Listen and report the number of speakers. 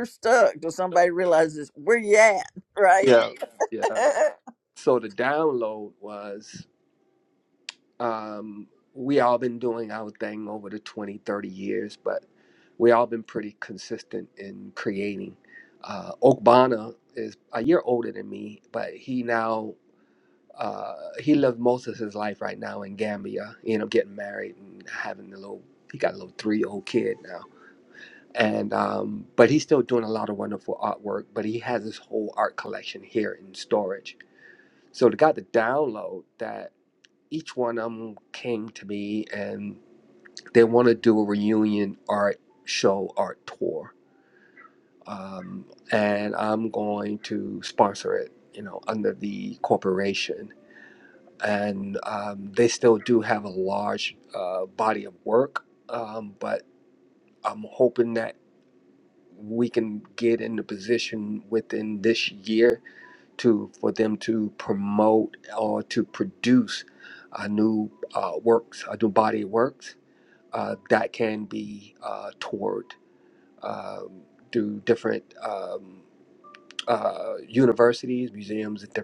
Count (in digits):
2